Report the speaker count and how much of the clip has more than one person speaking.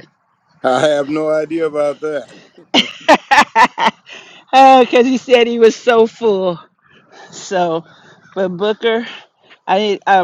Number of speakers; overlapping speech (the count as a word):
two, no overlap